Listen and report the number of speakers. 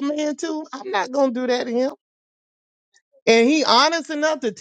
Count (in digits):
1